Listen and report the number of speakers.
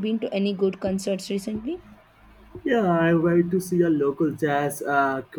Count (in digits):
2